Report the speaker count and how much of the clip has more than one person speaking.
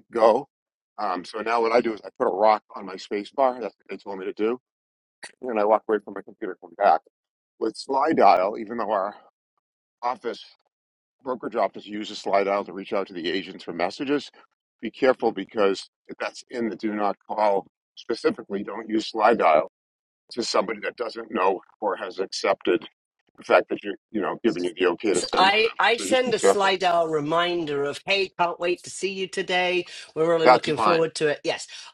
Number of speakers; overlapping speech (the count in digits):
2, about 7%